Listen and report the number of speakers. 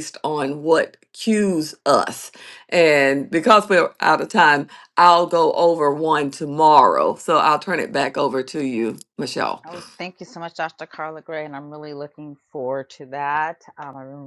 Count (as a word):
two